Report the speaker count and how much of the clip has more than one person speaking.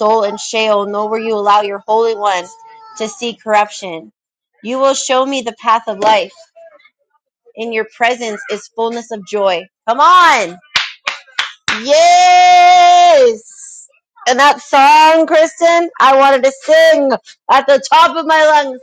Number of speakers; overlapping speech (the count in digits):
1, no overlap